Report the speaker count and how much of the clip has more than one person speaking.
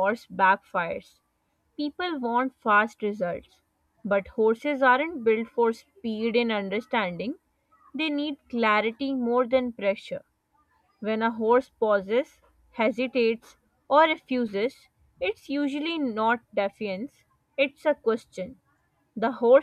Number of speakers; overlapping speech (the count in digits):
1, no overlap